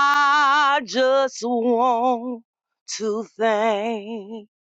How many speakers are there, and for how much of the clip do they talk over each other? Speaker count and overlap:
one, no overlap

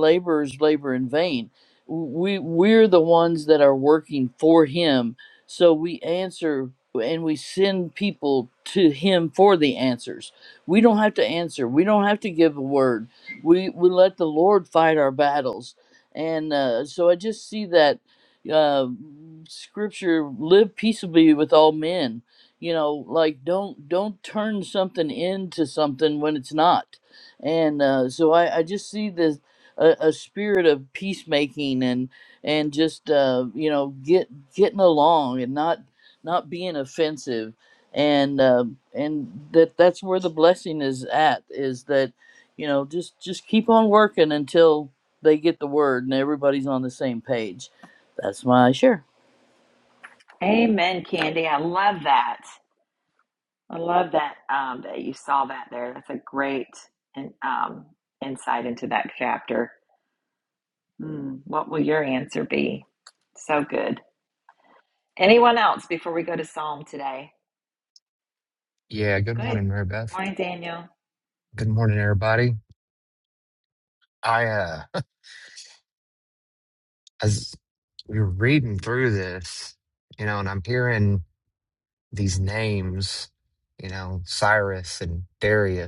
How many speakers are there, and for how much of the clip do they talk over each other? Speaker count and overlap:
three, under 1%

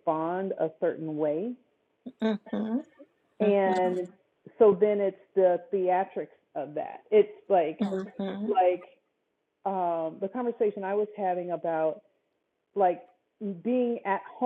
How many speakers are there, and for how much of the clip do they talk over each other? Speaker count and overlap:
two, about 4%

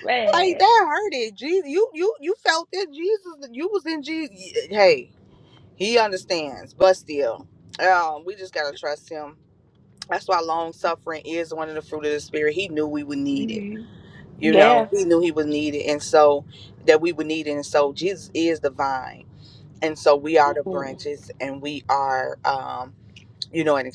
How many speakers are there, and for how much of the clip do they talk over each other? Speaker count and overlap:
two, about 7%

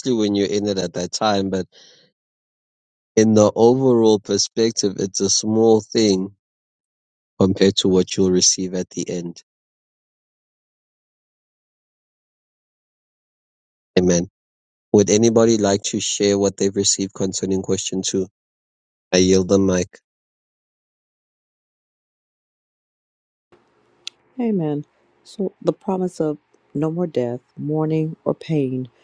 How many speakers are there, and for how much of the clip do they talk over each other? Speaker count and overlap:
two, no overlap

